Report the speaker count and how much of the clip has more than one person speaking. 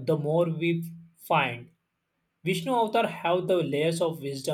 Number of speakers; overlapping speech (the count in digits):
1, no overlap